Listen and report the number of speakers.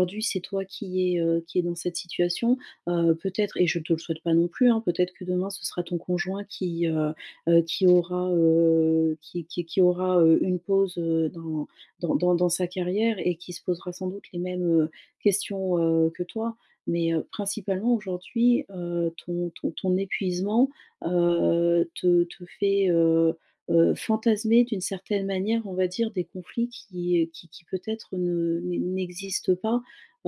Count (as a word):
one